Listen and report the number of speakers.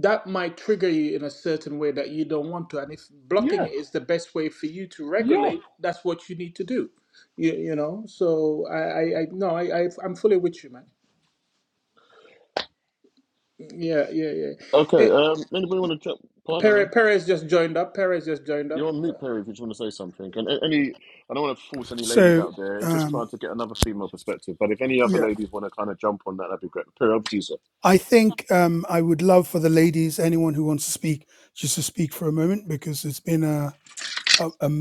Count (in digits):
3